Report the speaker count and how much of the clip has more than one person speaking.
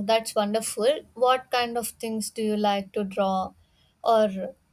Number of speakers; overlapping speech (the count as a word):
one, no overlap